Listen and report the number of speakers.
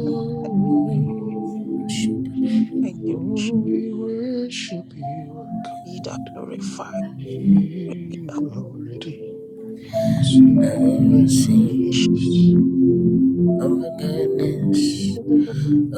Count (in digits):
3